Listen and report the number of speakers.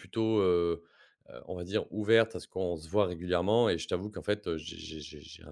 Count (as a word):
one